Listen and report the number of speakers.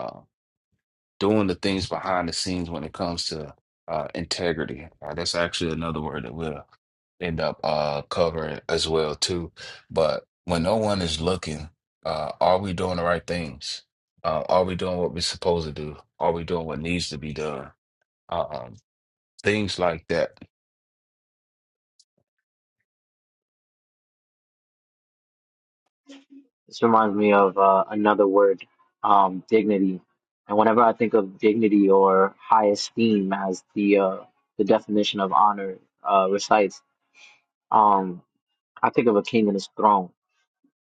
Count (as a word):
two